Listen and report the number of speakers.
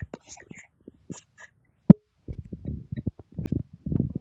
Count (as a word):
zero